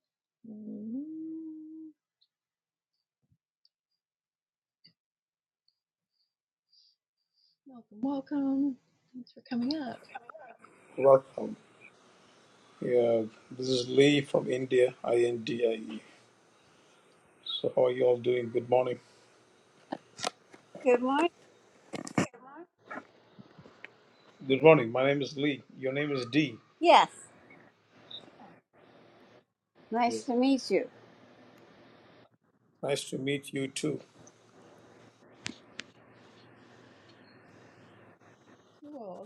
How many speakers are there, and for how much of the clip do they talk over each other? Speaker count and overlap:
three, under 1%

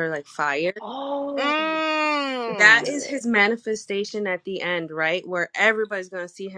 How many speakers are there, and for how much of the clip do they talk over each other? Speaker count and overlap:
three, about 14%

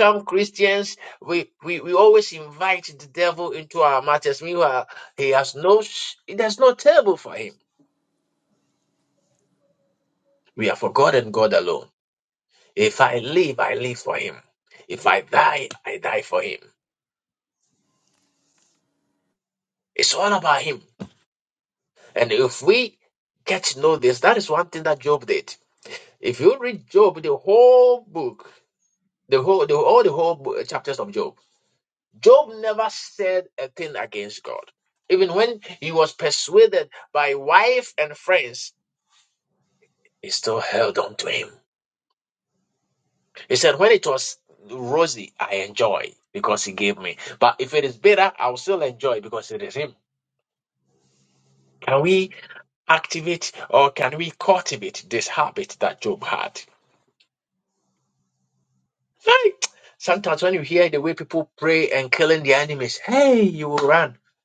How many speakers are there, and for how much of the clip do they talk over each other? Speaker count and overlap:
one, no overlap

